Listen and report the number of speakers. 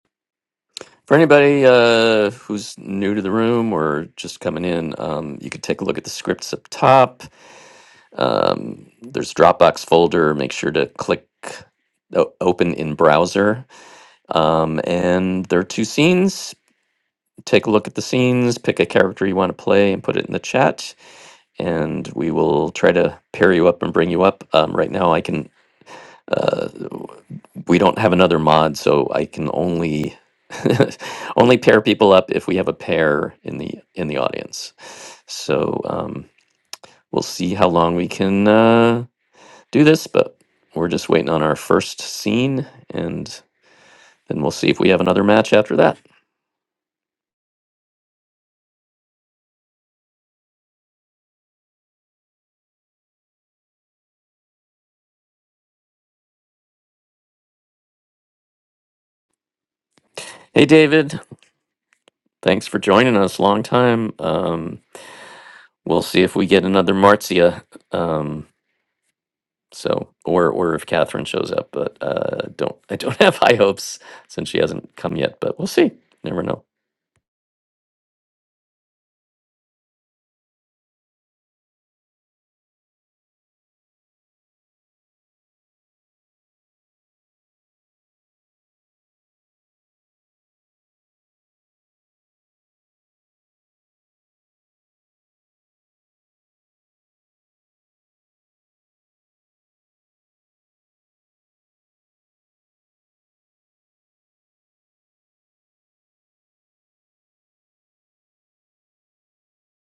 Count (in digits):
1